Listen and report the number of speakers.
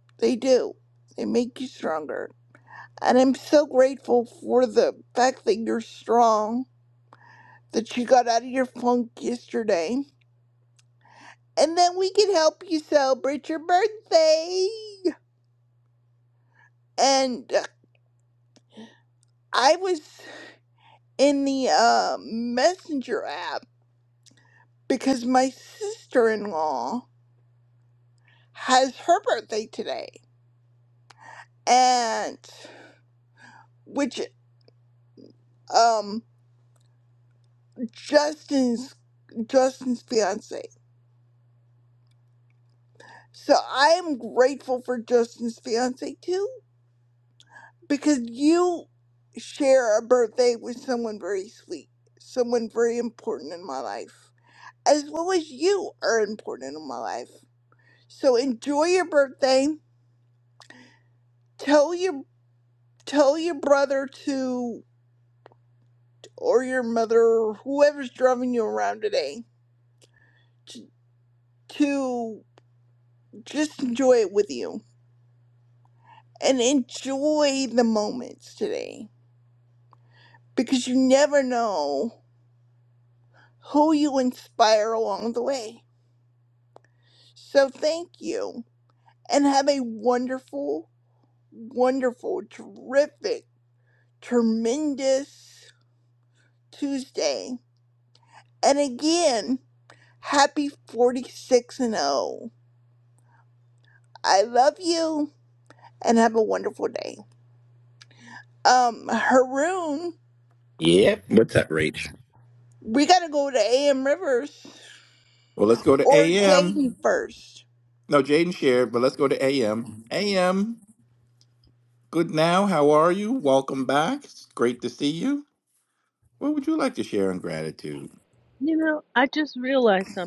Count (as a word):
three